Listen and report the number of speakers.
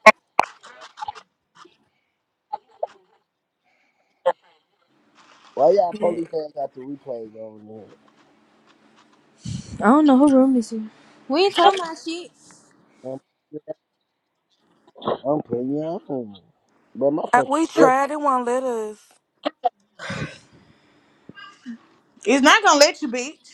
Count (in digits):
4